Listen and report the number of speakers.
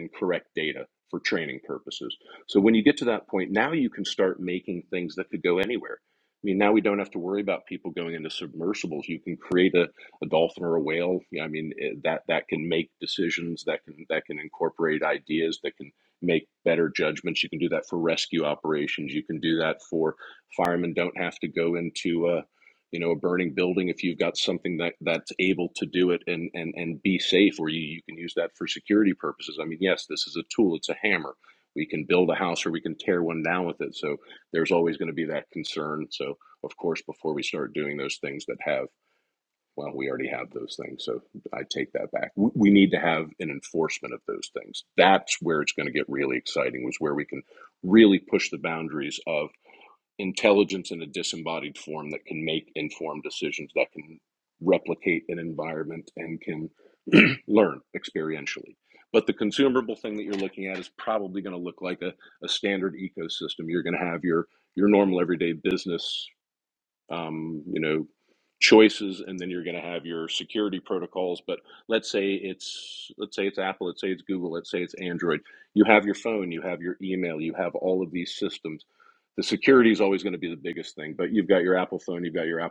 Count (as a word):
one